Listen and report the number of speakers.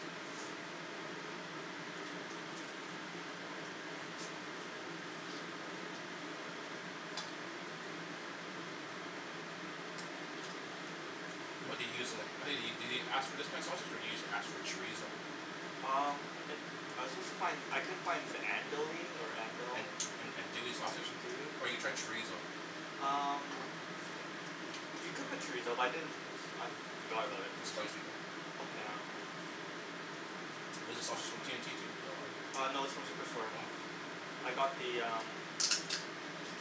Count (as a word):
two